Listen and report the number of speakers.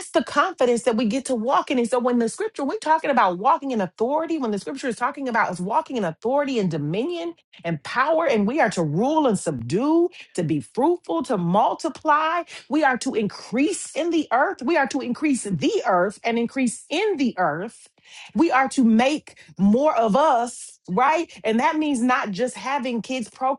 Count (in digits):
1